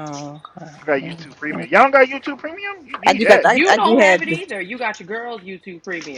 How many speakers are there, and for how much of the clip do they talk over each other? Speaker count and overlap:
3, about 36%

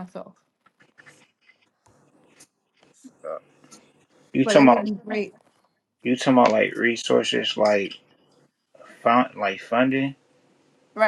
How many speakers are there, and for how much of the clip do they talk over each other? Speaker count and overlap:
2, about 4%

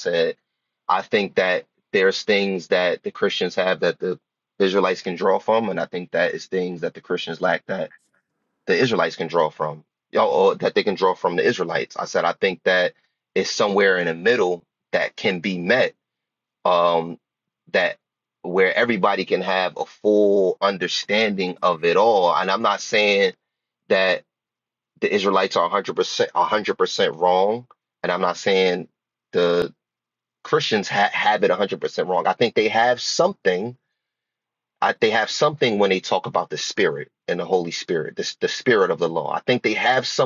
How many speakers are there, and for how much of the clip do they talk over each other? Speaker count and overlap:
1, no overlap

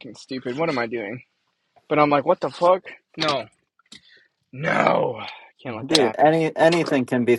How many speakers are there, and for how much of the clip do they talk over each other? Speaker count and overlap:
2, about 6%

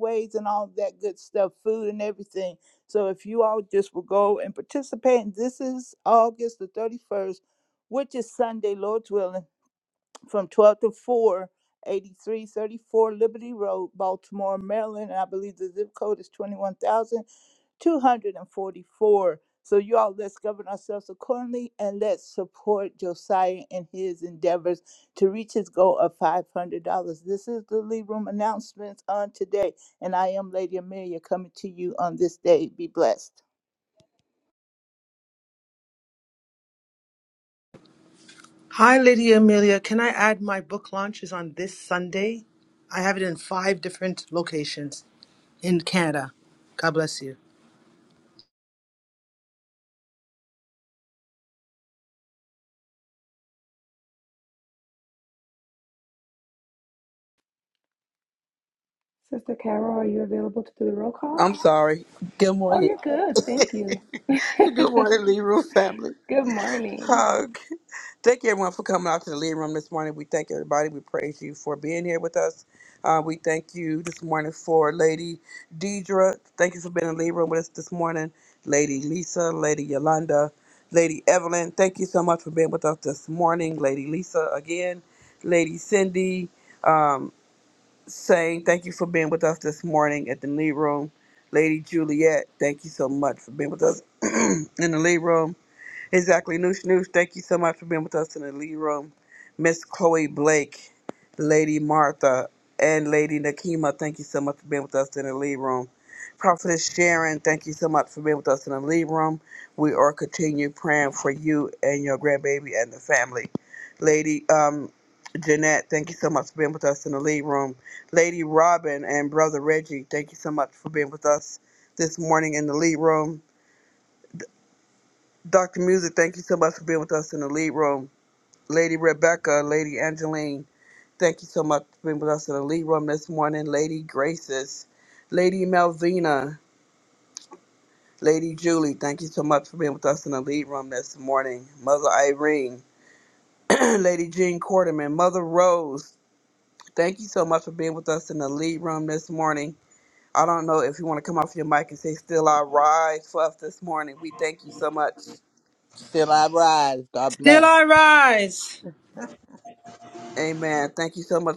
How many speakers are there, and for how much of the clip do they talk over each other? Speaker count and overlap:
5, about 1%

